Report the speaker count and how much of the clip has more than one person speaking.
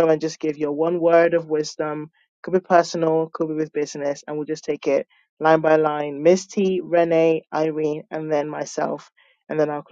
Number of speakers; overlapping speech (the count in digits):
1, no overlap